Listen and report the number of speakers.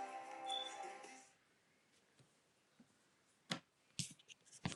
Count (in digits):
0